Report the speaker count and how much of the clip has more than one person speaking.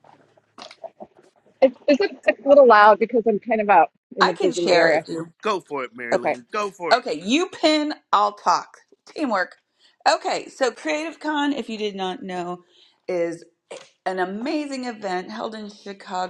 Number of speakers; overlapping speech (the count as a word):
three, about 7%